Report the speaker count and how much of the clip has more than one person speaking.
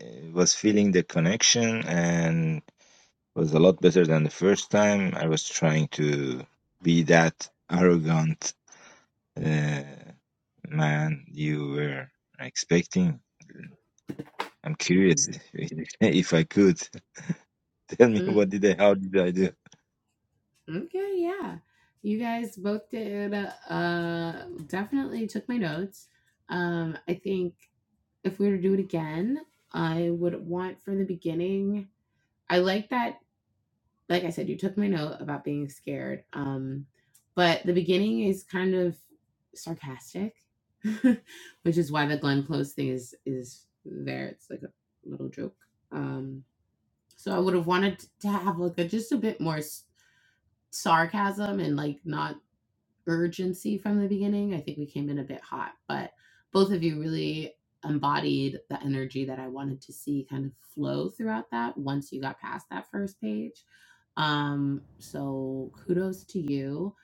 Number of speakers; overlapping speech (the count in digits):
2, under 1%